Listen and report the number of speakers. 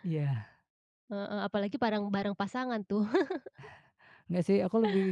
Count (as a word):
two